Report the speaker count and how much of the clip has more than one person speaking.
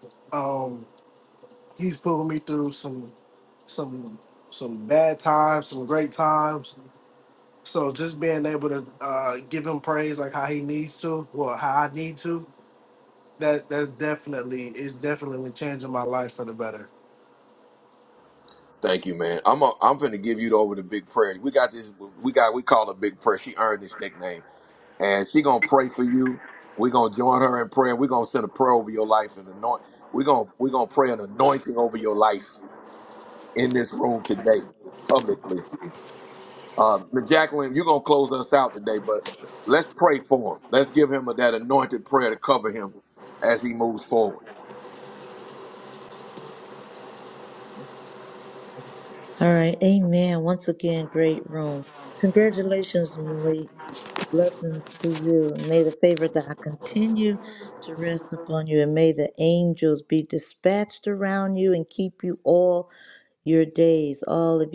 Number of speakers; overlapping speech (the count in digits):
3, no overlap